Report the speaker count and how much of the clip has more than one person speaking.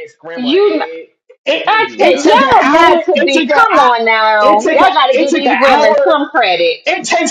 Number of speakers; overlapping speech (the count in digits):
3, about 62%